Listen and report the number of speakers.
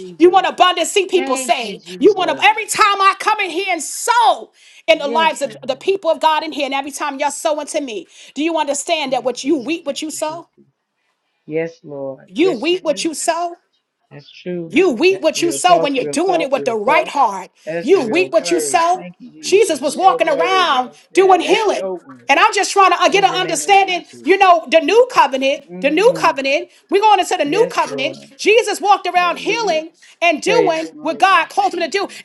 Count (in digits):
2